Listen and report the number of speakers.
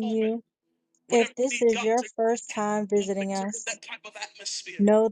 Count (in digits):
1